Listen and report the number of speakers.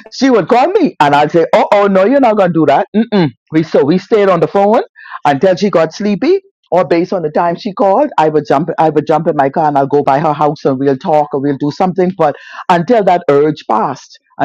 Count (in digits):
1